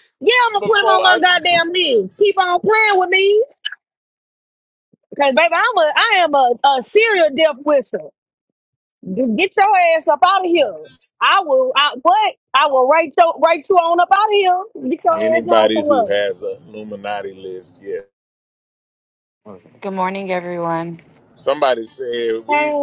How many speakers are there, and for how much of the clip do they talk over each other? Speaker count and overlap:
three, about 9%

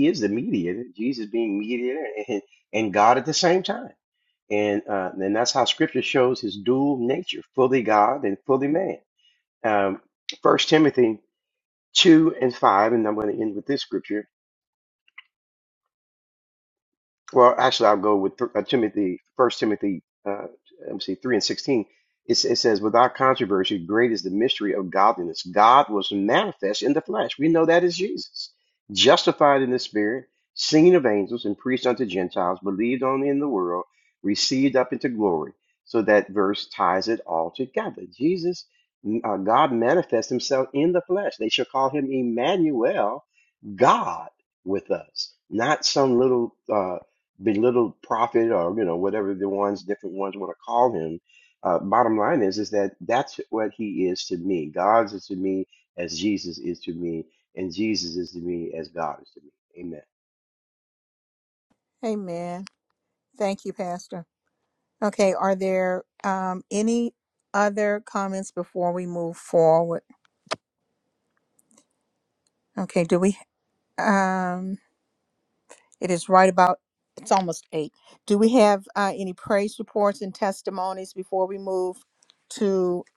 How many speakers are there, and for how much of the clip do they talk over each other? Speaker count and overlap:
two, no overlap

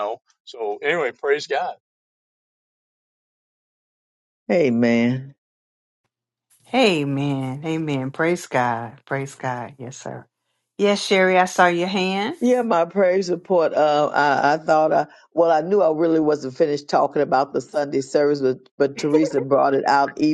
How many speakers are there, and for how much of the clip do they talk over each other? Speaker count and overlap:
three, no overlap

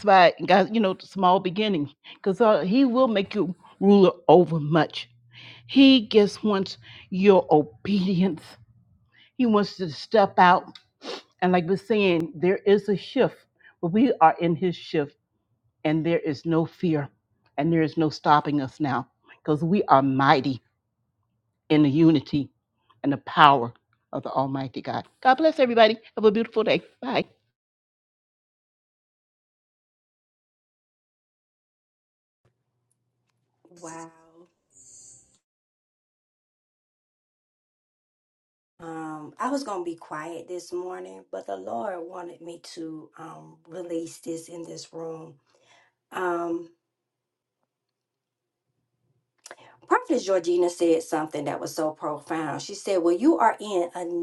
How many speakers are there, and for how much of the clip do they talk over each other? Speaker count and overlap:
two, no overlap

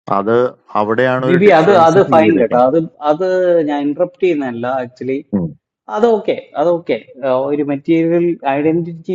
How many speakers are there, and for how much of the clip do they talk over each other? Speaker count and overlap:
two, about 15%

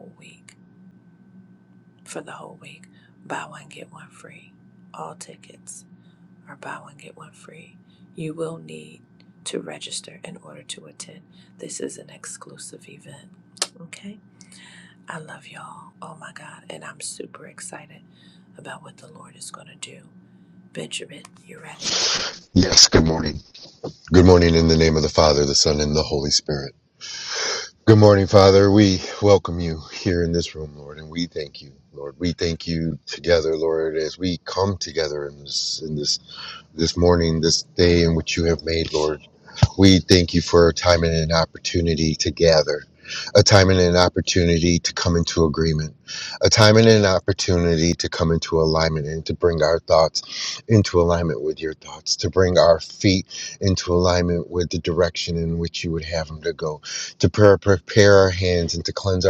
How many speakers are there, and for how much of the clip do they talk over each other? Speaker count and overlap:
two, no overlap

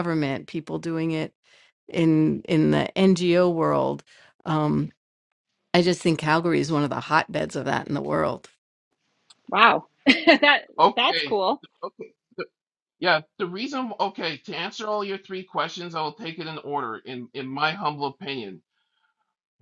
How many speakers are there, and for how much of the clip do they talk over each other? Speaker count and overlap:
three, about 2%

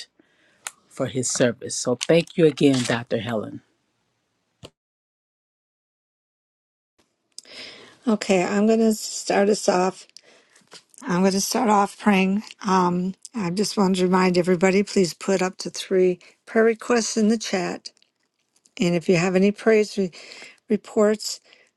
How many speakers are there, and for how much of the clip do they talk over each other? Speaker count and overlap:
two, no overlap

